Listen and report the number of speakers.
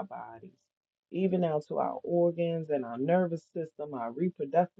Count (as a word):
one